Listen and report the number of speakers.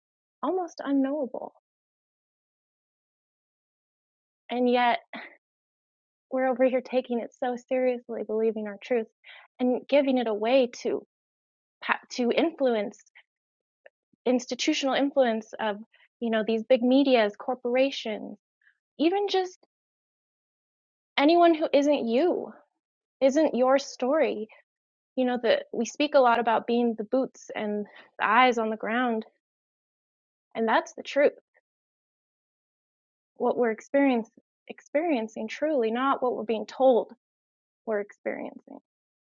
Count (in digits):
1